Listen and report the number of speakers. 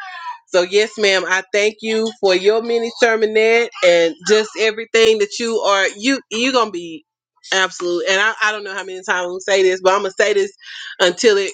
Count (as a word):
one